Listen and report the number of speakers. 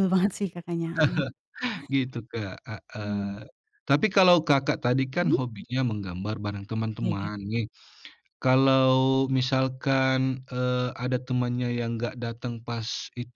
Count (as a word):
two